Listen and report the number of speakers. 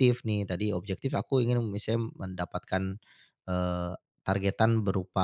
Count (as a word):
one